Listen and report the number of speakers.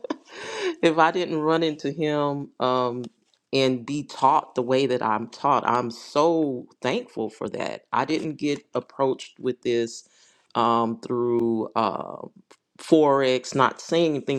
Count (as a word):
one